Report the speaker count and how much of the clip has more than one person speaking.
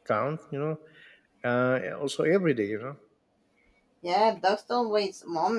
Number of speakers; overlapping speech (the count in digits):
2, no overlap